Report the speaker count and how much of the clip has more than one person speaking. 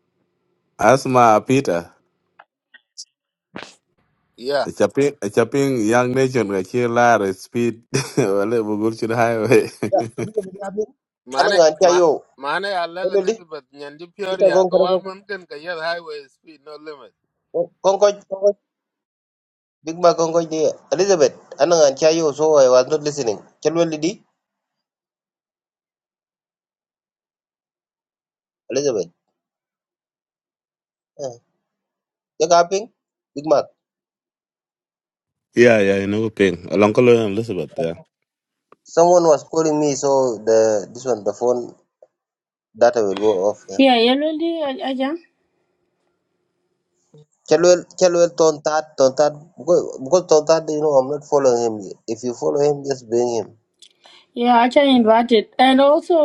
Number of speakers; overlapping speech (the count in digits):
4, about 3%